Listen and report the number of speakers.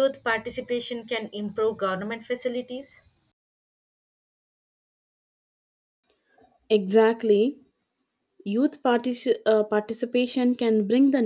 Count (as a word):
two